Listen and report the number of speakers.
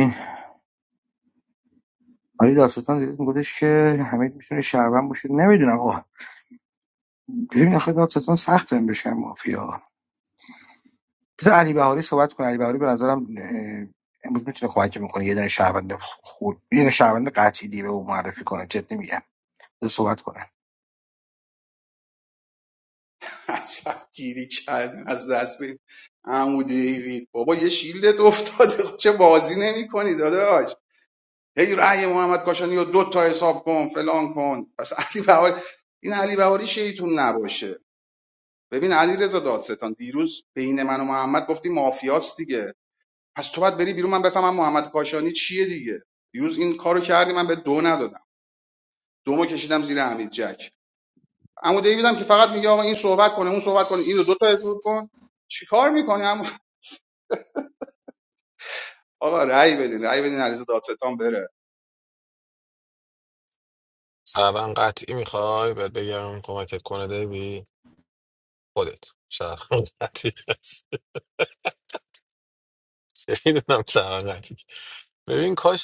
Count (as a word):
three